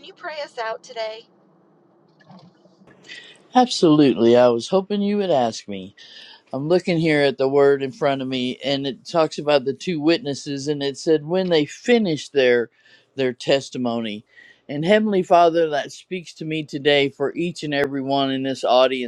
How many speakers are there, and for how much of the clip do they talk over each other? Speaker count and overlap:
two, no overlap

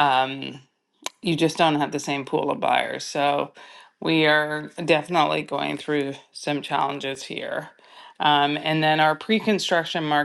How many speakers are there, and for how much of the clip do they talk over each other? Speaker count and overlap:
one, no overlap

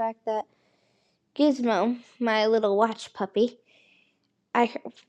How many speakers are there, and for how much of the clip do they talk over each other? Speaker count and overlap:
one, no overlap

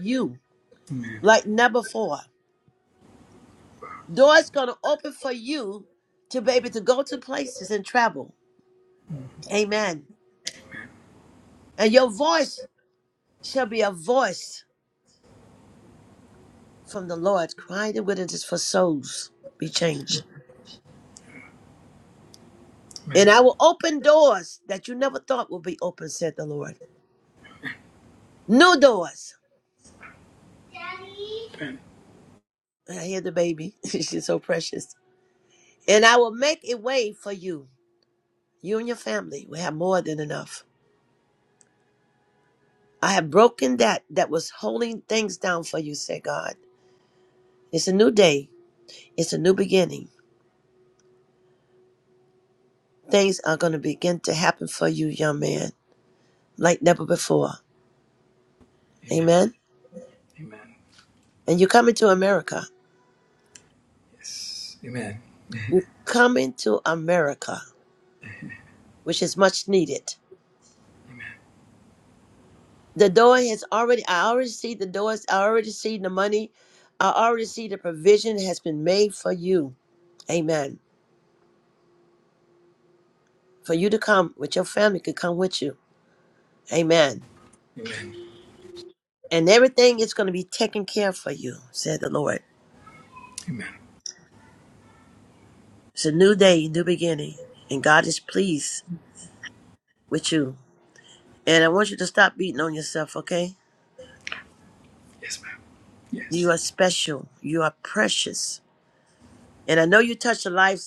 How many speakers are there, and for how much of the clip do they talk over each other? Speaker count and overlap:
two, under 1%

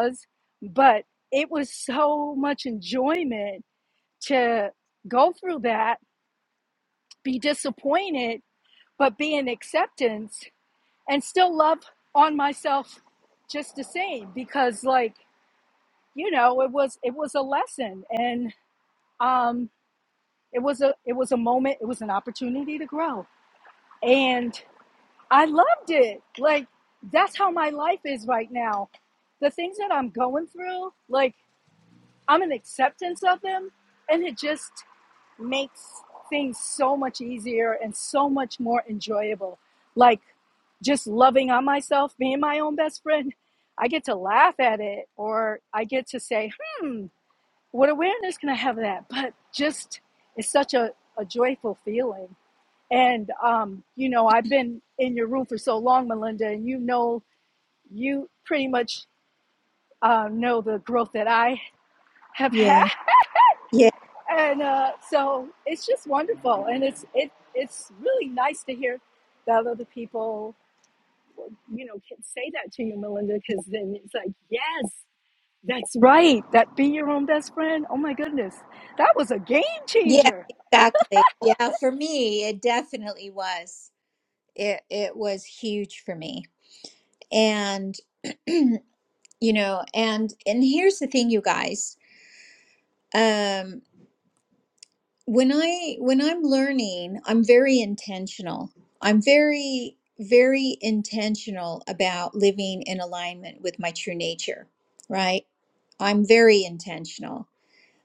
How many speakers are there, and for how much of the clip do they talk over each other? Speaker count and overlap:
two, about 1%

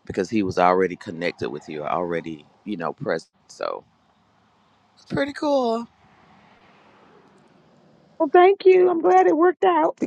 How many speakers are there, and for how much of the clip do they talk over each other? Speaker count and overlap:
two, no overlap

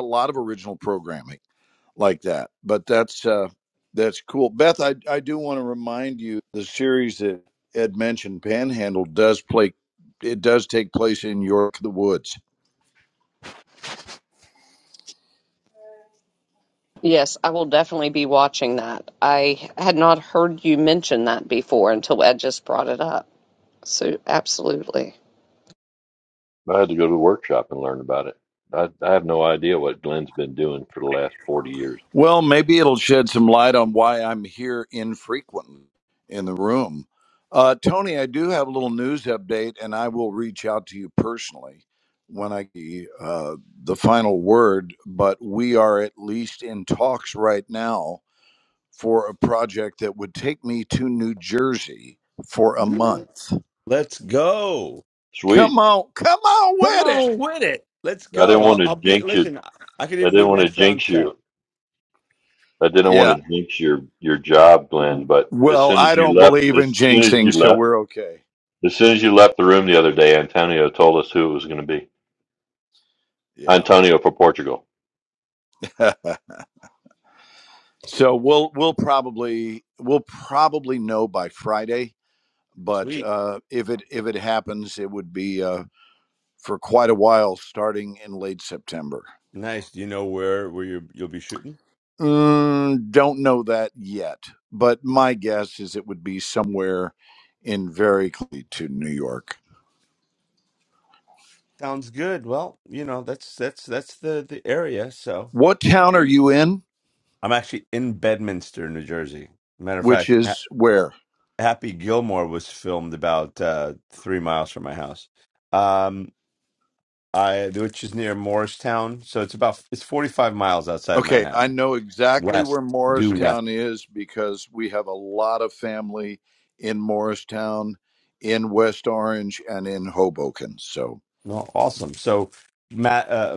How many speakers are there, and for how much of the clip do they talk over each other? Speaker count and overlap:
four, about 6%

